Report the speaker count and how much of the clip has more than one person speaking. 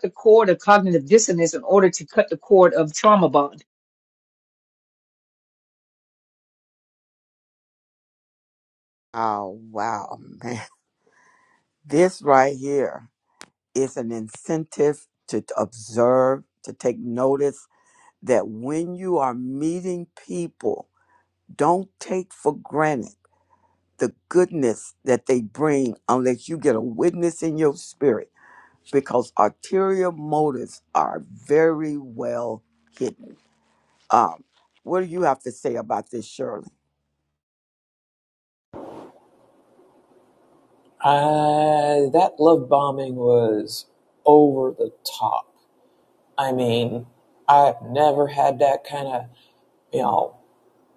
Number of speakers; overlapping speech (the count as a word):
three, no overlap